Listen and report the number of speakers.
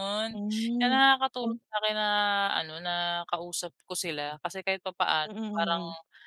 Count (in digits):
2